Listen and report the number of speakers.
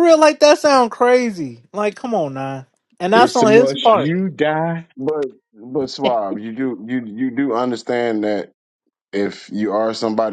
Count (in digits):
3